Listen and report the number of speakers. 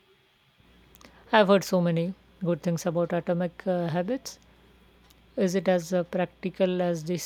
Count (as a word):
one